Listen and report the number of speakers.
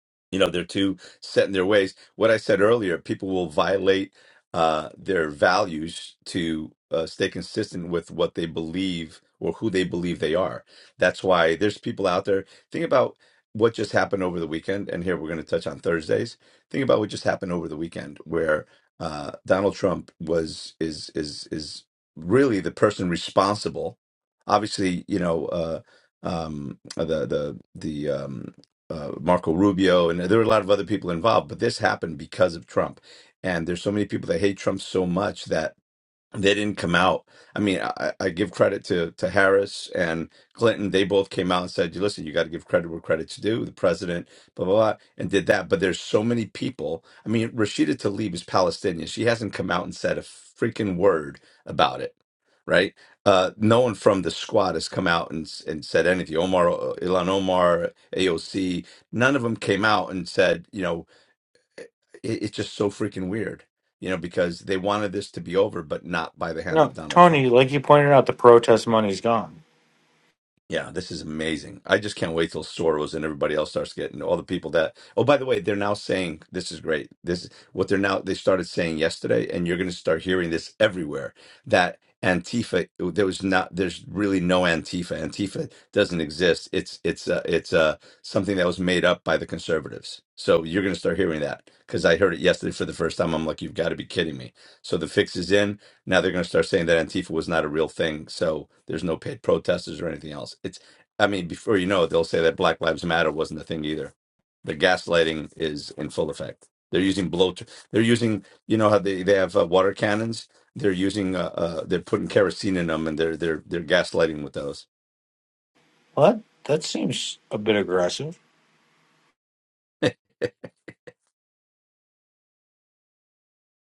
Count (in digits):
2